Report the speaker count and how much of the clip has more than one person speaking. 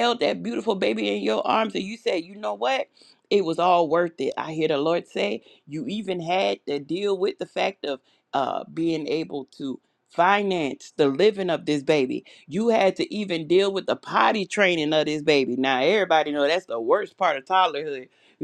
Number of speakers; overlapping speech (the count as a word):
one, no overlap